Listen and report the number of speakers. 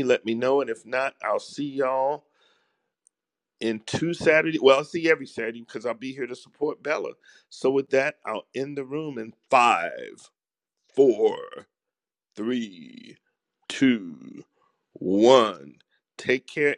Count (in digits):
1